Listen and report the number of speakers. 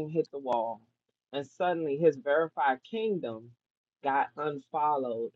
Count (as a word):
one